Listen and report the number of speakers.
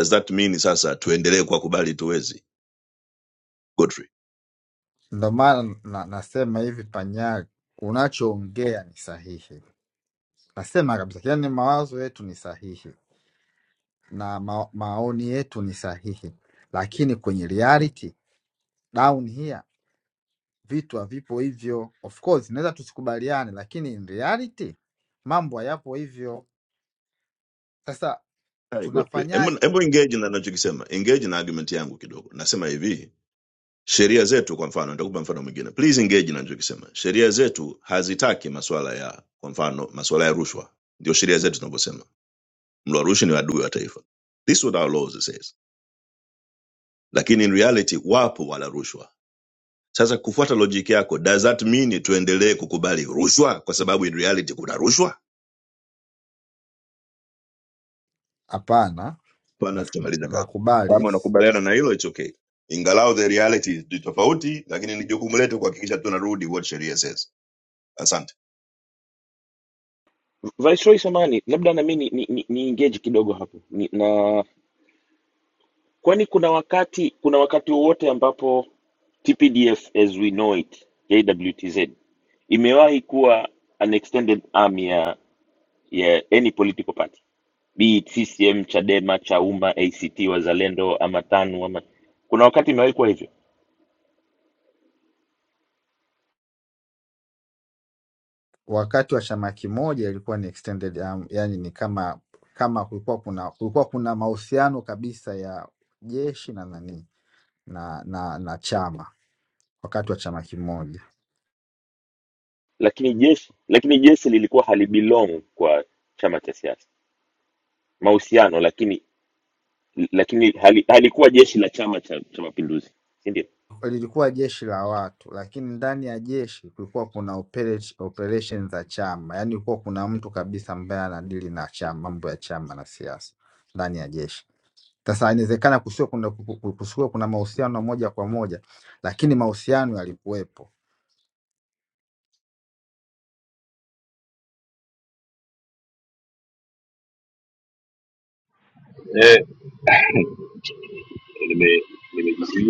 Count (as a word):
four